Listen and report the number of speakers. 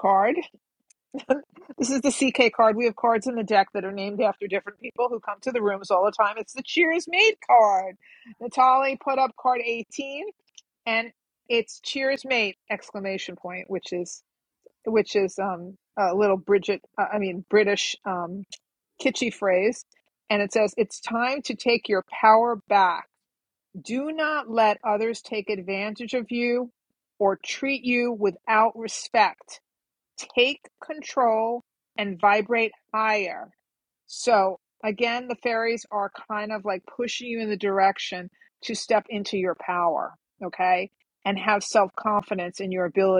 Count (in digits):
1